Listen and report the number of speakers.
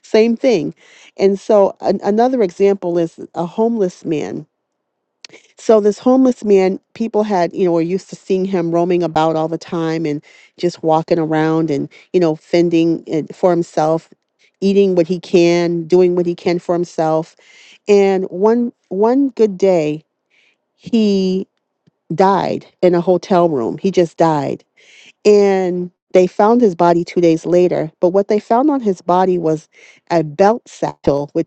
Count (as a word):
one